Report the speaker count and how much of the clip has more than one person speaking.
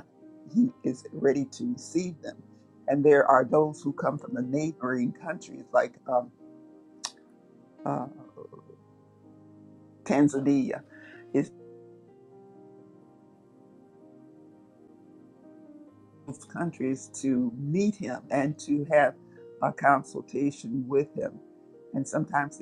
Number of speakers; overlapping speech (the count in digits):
1, no overlap